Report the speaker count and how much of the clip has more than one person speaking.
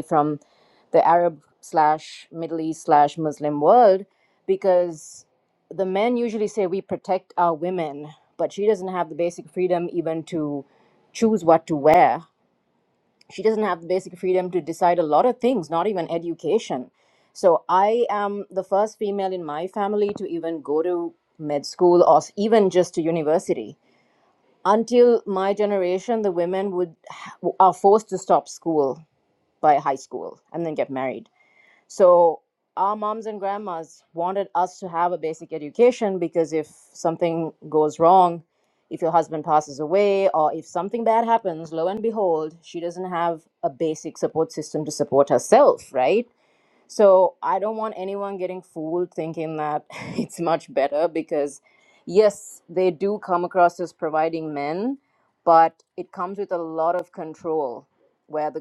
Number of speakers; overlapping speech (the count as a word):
one, no overlap